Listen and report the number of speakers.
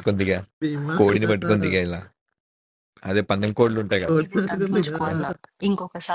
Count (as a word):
three